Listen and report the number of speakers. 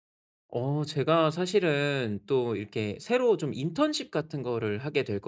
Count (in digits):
1